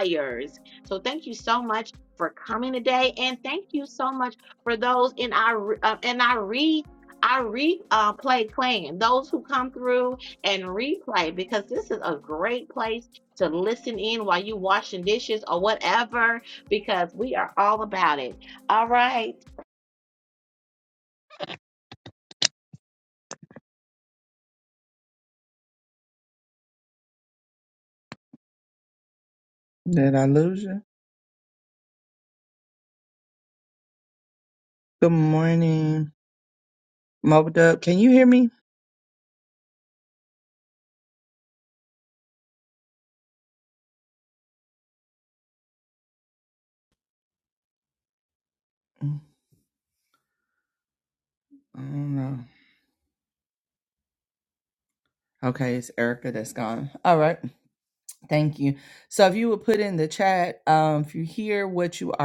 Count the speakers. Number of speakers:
two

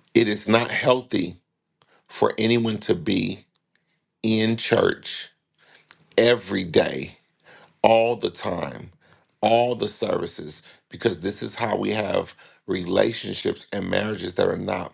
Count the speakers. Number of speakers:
one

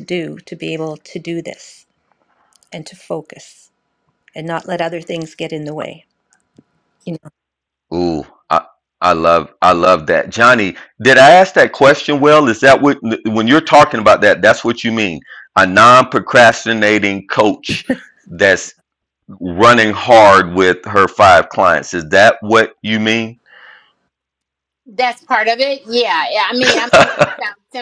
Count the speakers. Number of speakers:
three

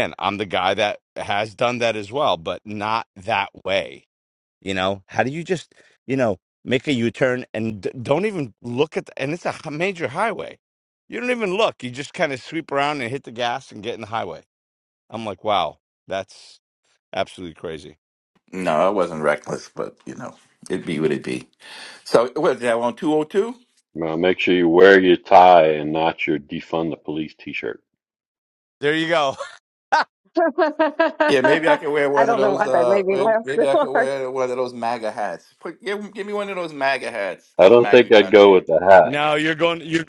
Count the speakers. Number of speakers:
four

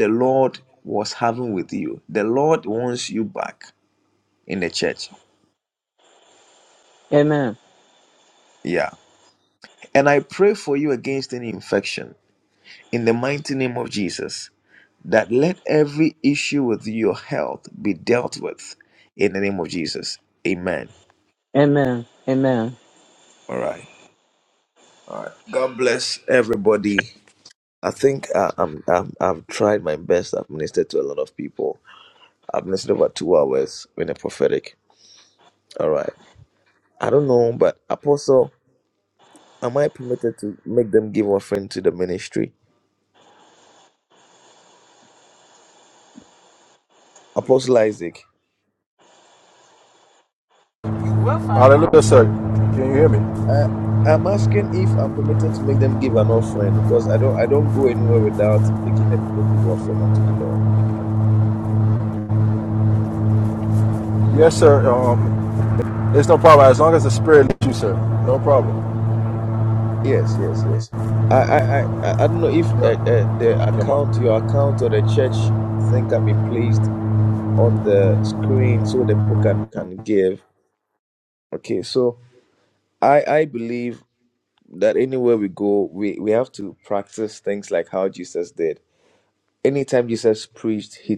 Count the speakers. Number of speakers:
three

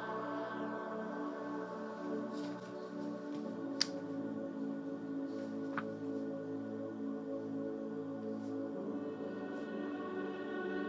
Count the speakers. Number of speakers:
zero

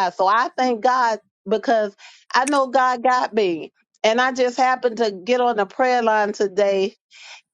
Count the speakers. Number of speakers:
one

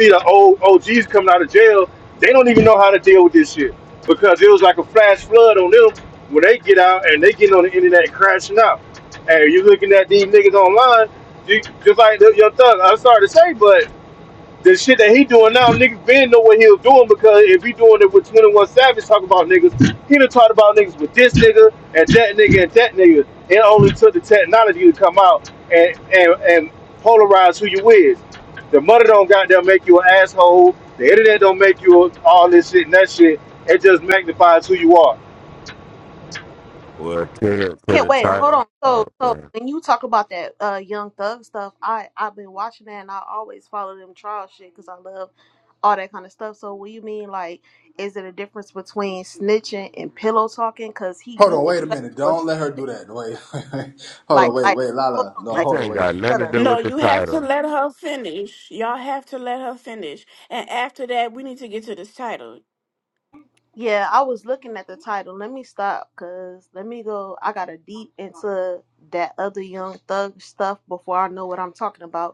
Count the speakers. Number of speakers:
five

